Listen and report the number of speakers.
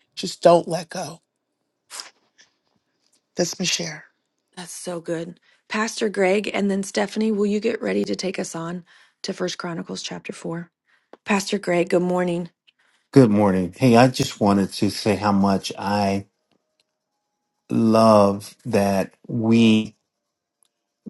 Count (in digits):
3